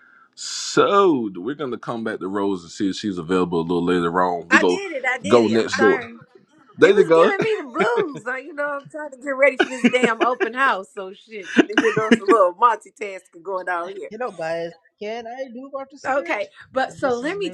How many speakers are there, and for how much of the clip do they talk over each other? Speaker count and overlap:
three, about 15%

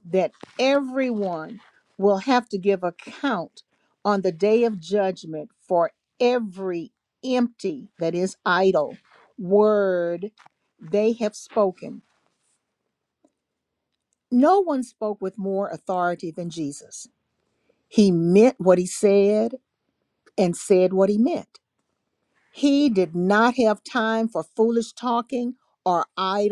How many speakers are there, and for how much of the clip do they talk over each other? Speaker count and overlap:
one, no overlap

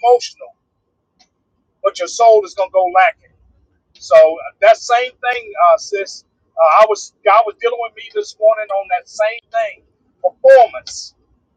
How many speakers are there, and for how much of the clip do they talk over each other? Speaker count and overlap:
one, no overlap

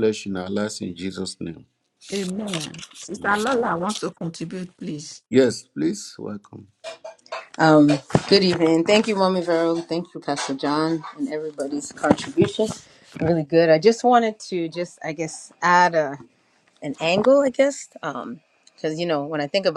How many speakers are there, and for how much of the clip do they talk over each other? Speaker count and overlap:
three, no overlap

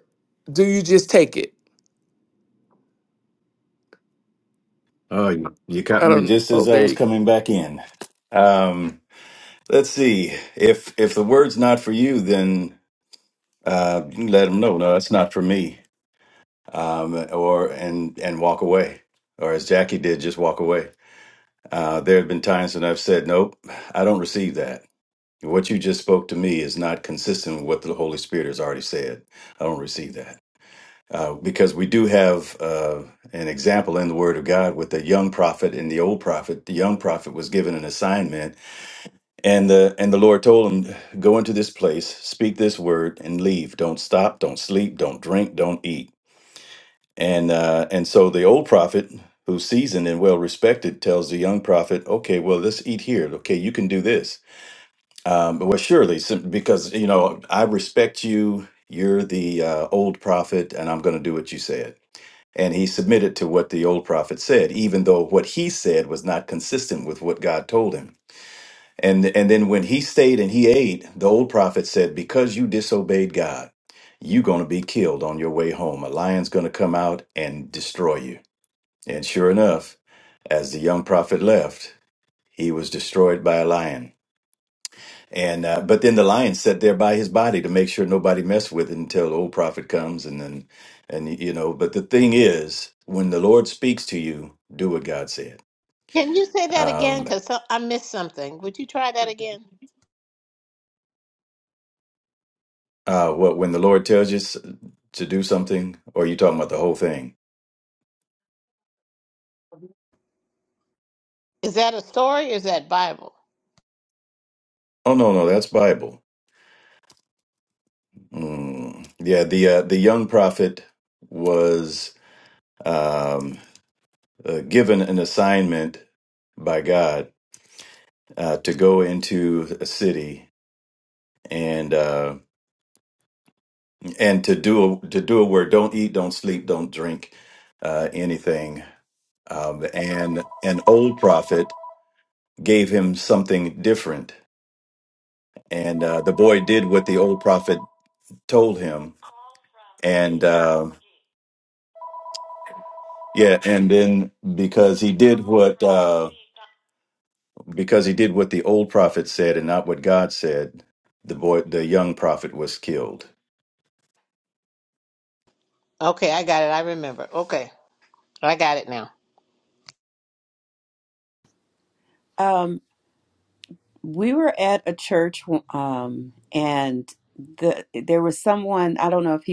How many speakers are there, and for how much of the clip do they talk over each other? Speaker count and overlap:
four, about 1%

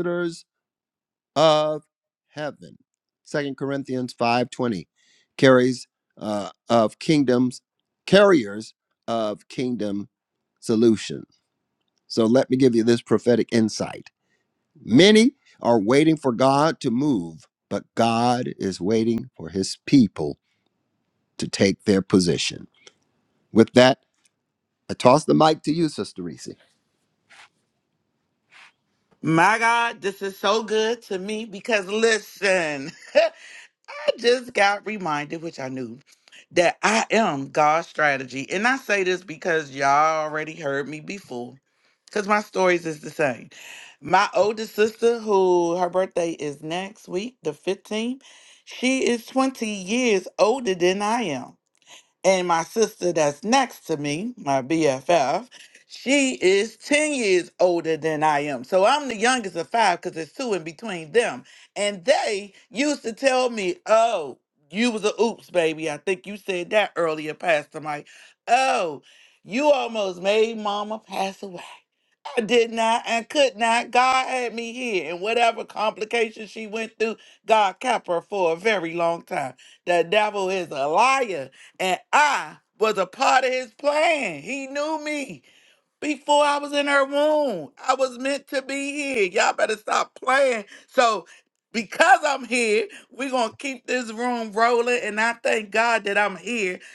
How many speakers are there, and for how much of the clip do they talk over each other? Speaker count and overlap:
two, no overlap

